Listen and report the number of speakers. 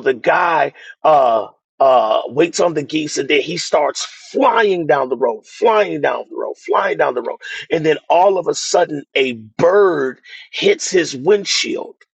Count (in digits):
1